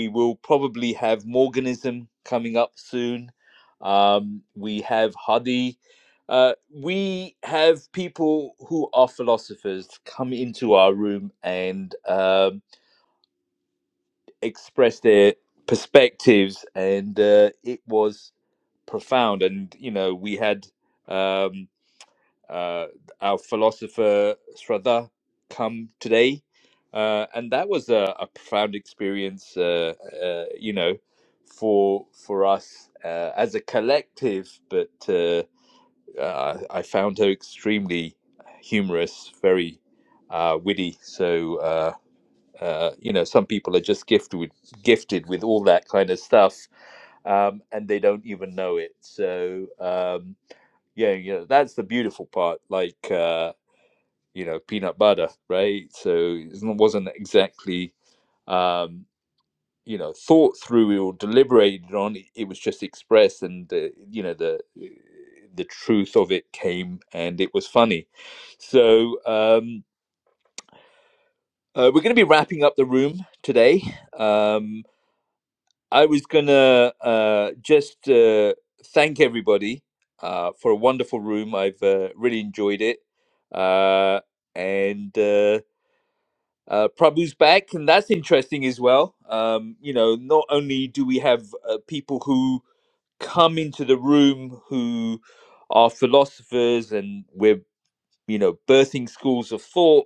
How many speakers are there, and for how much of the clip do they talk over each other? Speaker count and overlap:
1, no overlap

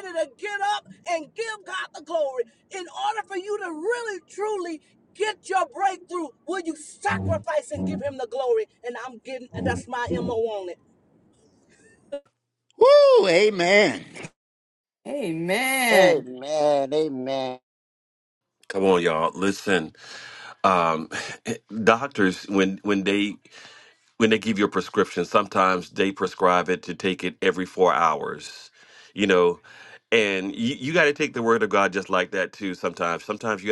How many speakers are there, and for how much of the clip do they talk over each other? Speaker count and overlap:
5, about 1%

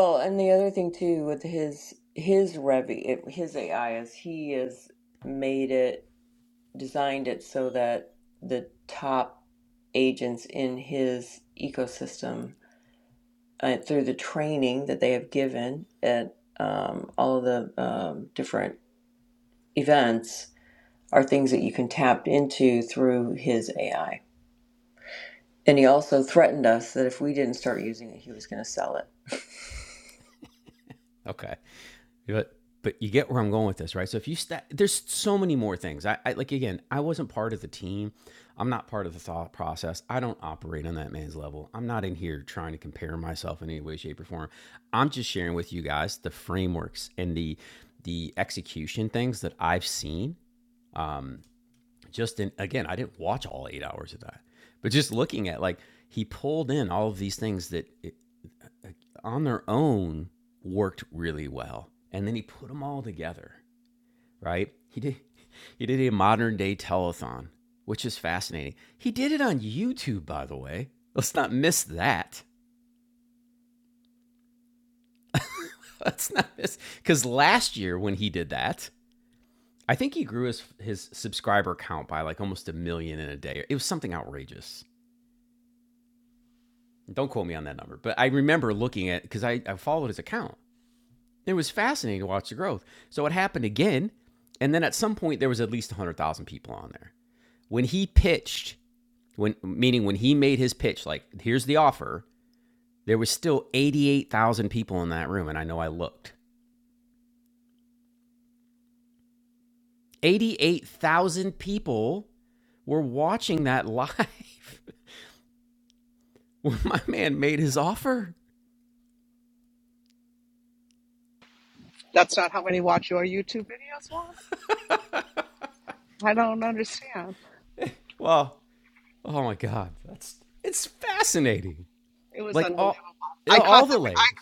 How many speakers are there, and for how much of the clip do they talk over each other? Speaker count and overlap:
3, about 1%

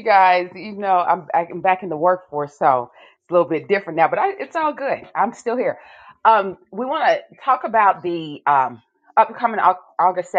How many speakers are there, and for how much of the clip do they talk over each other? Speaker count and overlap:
1, no overlap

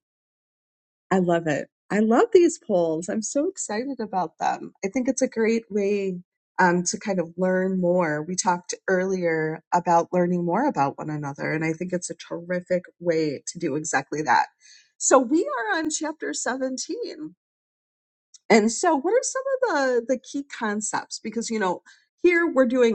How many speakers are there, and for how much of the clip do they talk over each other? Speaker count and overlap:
1, no overlap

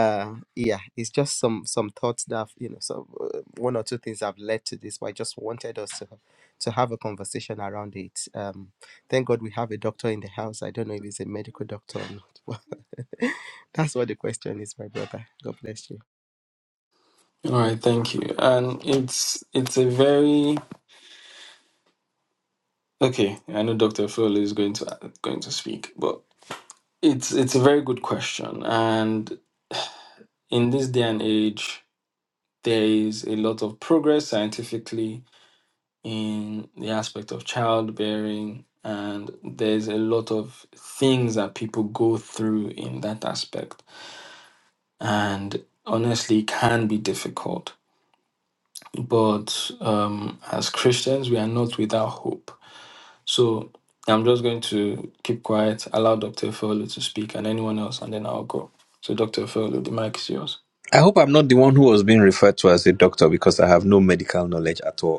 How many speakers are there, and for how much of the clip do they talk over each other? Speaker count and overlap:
3, no overlap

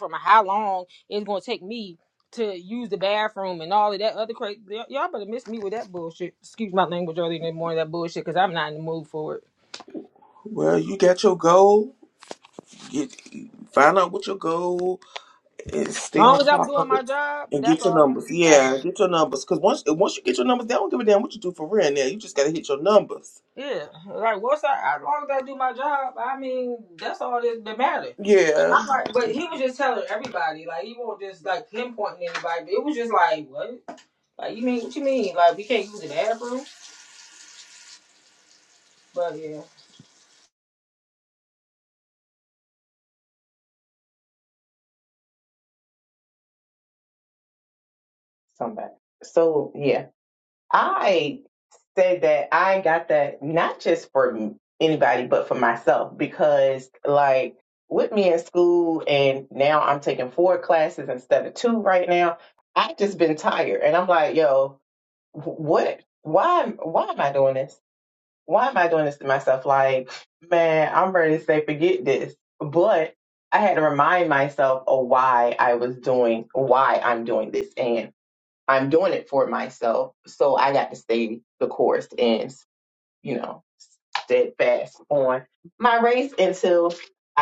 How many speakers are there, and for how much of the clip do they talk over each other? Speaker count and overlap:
3, about 3%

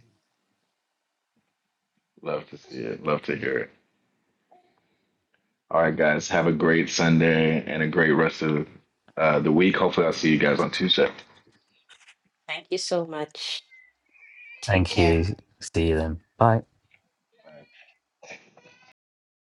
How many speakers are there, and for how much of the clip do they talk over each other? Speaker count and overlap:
3, about 3%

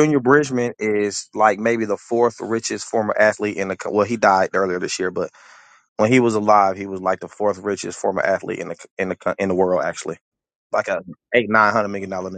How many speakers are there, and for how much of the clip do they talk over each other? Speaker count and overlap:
1, no overlap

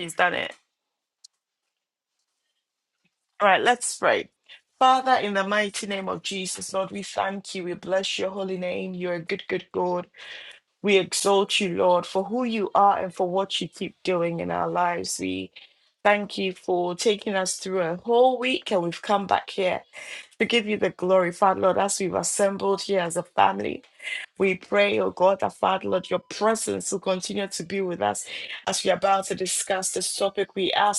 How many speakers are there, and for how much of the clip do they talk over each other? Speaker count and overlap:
1, no overlap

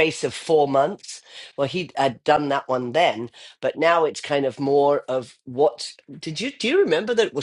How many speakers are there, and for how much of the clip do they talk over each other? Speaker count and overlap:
1, no overlap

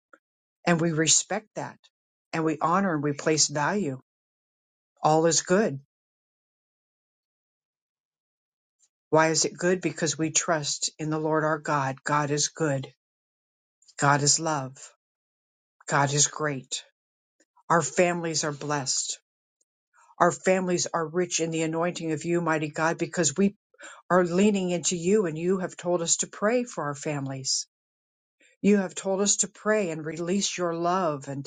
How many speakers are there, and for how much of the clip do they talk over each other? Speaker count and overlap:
1, no overlap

